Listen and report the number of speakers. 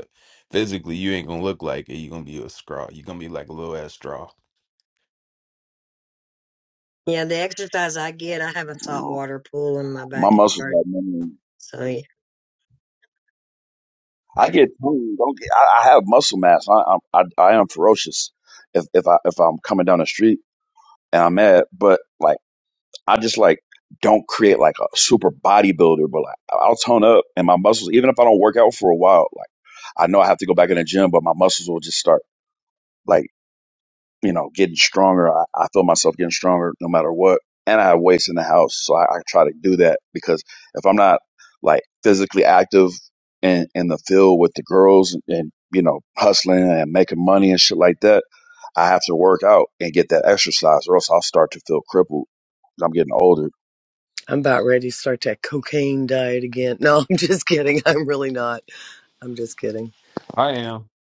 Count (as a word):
four